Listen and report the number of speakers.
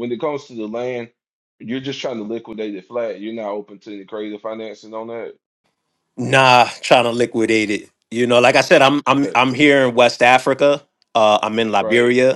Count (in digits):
2